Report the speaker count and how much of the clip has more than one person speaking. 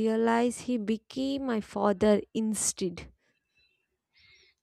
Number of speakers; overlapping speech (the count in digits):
1, no overlap